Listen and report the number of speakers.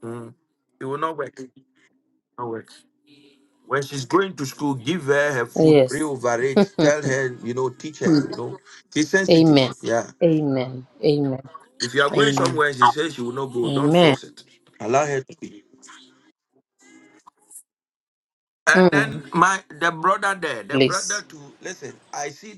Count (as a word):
two